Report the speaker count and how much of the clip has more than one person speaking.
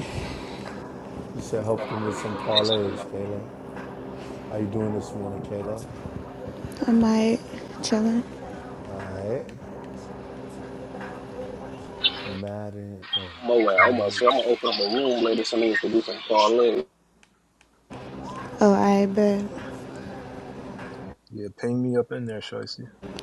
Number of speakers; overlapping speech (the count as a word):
four, about 7%